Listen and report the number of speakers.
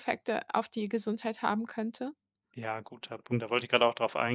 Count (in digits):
2